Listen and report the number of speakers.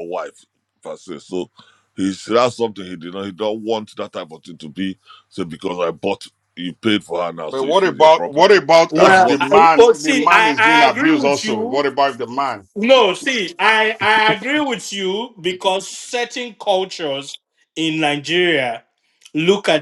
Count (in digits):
3